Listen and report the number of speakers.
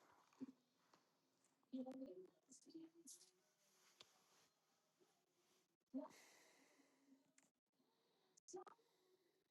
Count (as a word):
zero